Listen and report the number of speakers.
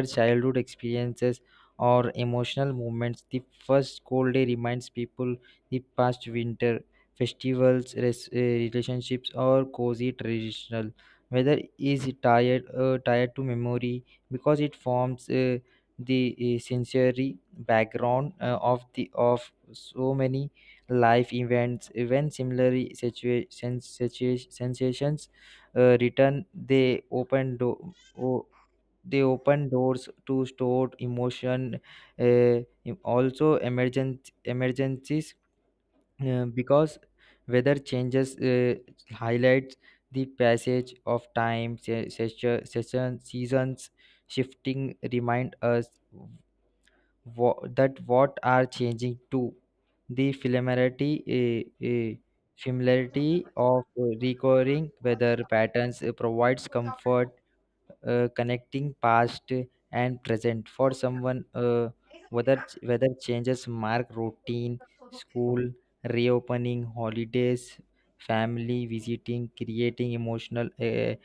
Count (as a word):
one